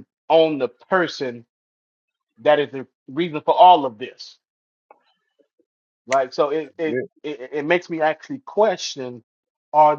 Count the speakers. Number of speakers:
one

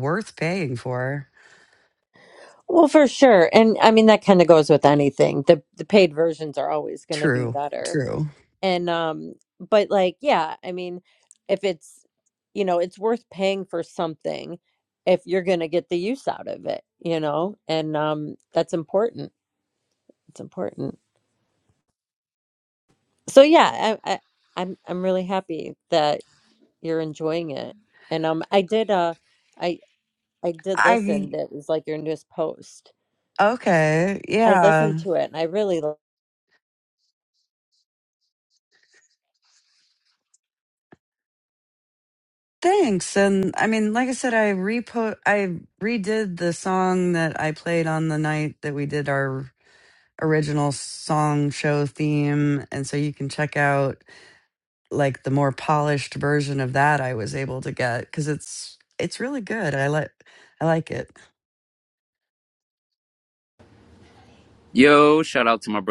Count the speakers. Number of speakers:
three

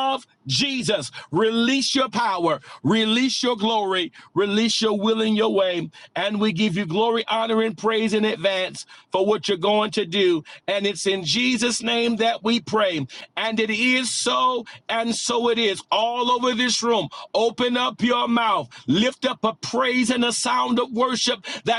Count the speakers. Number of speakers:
one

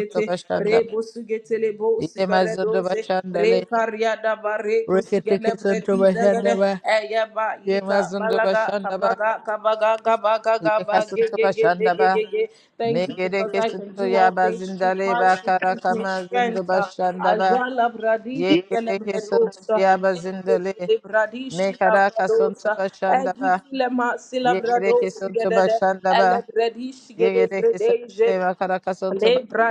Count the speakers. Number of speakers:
two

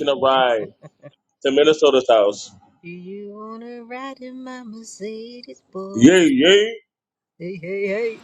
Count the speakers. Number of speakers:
two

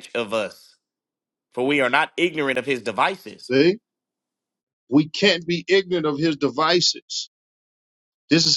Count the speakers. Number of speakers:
two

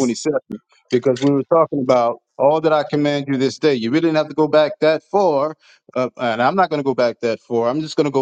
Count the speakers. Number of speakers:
one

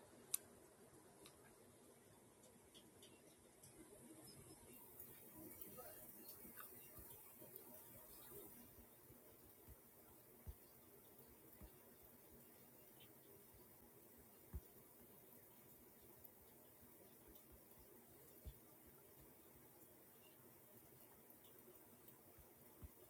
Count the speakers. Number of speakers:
zero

